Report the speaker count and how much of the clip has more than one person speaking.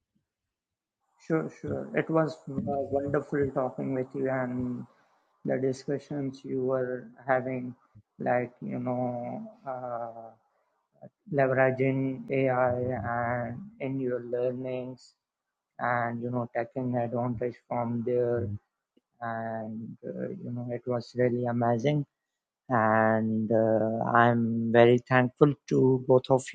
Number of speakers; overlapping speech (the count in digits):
1, no overlap